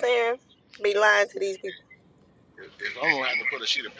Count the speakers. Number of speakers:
two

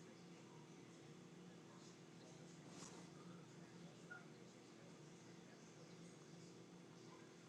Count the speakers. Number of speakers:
zero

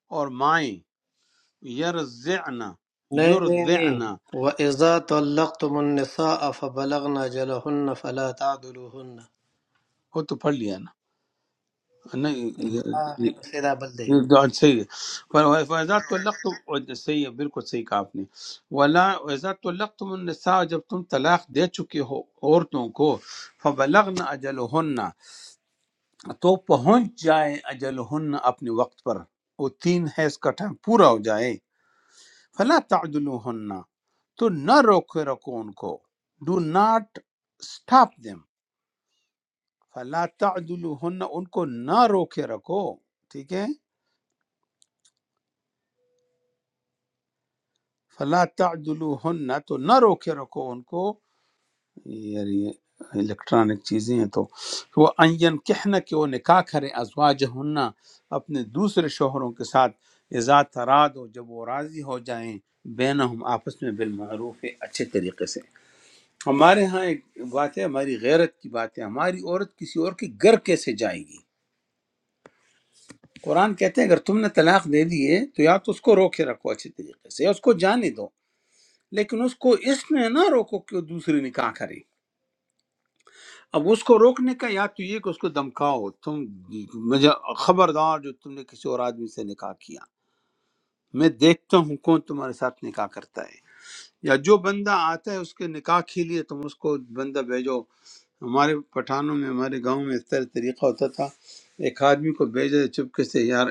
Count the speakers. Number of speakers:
two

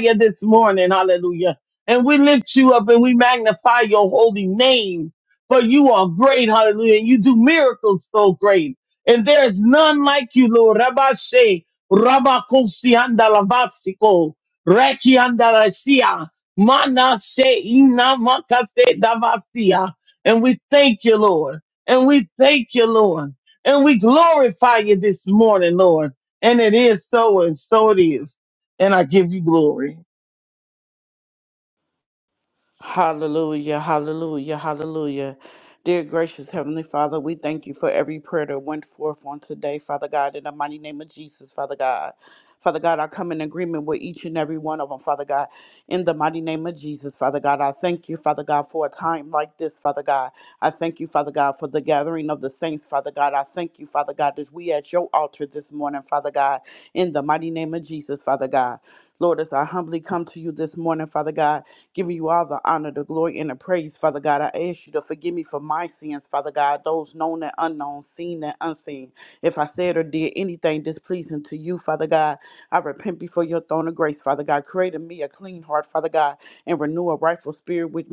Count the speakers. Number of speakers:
two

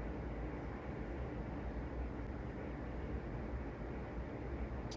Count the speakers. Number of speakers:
zero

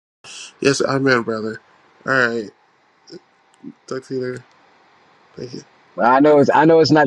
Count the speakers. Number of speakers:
two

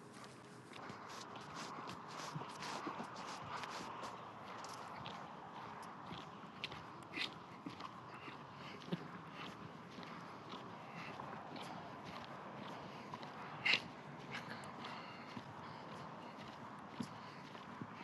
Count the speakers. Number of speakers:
zero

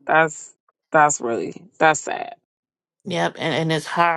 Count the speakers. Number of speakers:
two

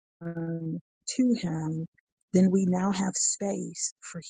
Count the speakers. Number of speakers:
one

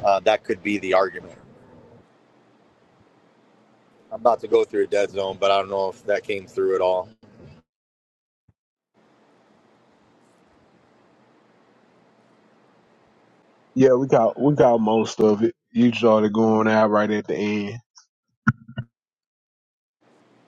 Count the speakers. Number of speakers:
two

